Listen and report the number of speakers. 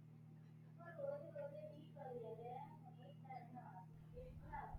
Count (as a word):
zero